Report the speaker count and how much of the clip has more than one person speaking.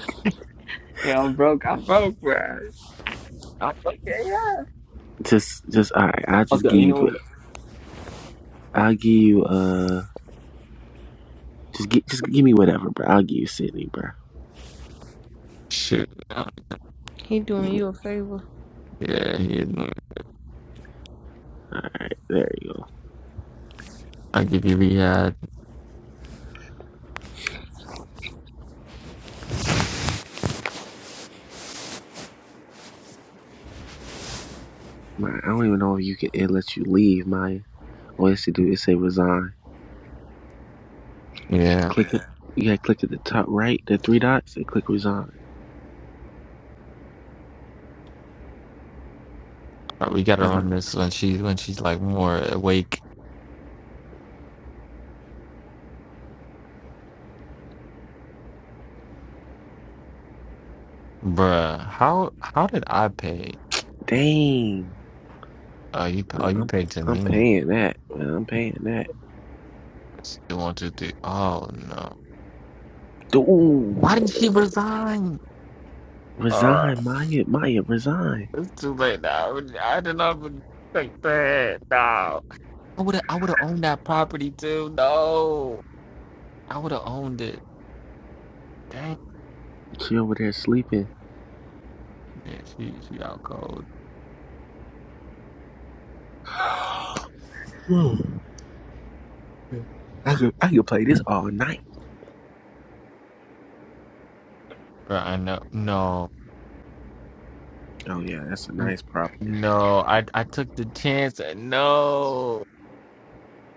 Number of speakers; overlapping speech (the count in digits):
3, about 3%